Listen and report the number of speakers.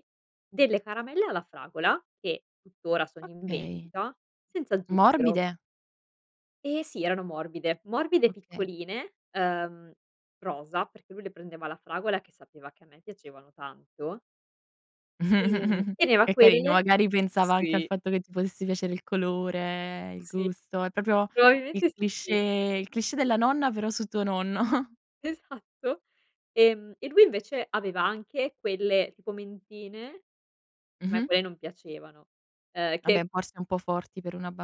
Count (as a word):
two